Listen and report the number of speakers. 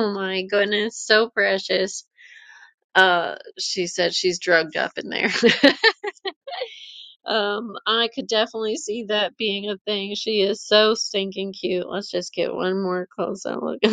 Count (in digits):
1